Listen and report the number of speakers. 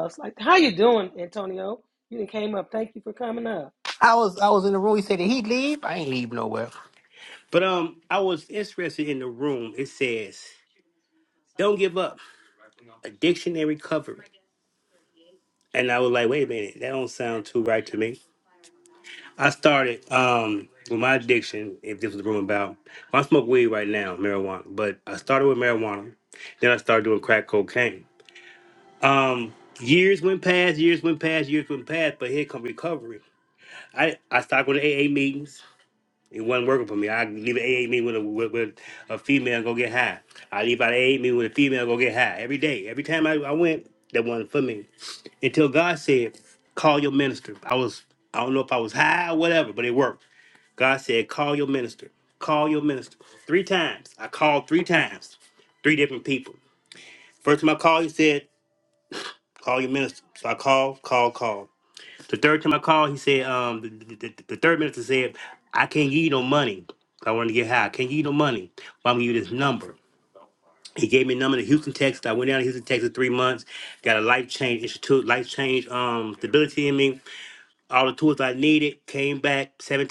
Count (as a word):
two